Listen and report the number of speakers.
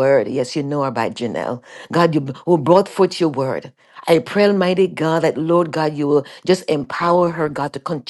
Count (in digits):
1